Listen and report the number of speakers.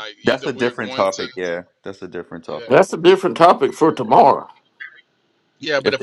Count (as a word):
three